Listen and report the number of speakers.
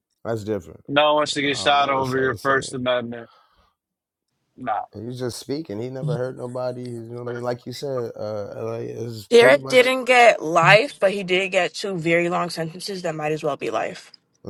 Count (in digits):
3